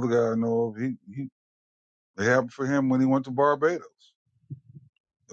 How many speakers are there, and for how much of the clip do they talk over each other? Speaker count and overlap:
1, no overlap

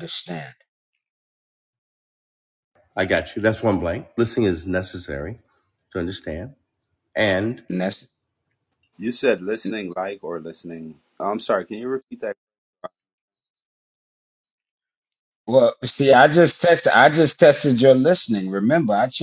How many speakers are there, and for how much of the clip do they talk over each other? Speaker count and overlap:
3, no overlap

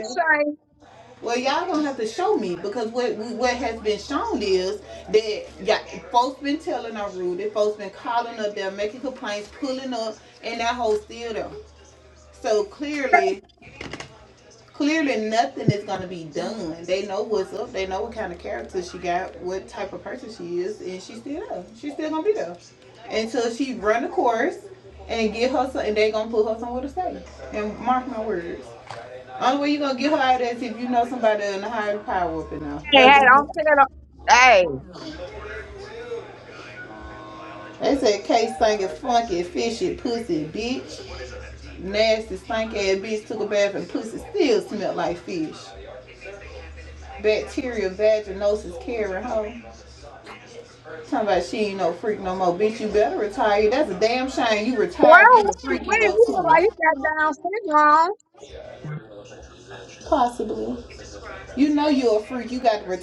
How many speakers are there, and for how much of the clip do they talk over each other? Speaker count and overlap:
2, about 3%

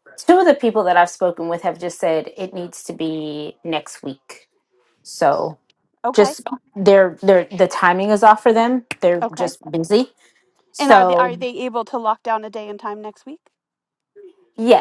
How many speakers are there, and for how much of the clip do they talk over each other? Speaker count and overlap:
2, about 6%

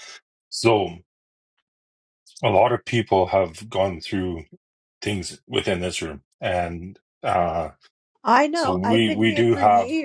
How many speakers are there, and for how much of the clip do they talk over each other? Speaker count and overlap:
2, about 13%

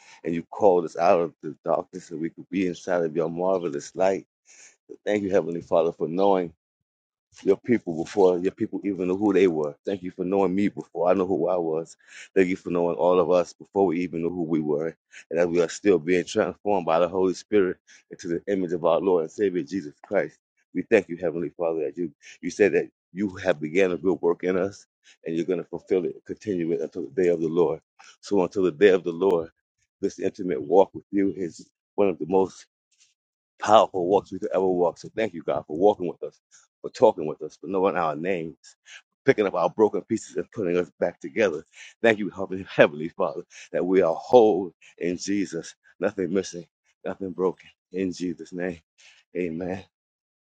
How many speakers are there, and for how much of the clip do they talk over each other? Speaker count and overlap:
1, no overlap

